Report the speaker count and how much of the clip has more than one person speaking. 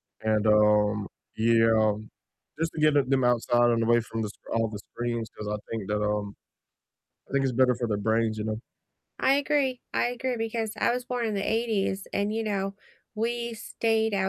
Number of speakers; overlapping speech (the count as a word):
two, no overlap